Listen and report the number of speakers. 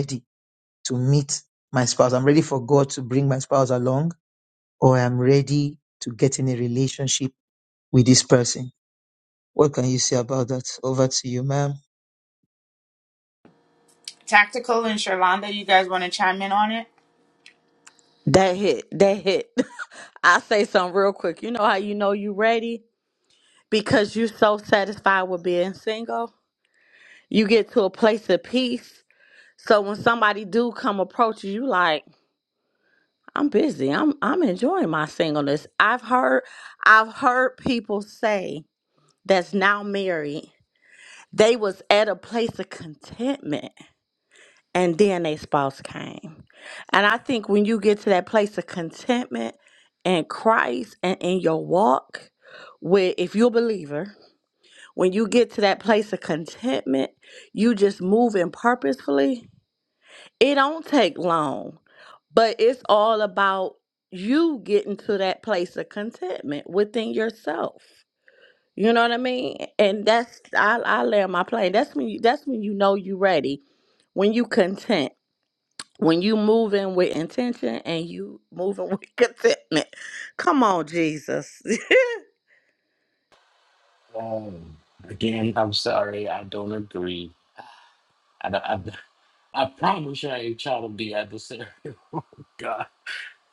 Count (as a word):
four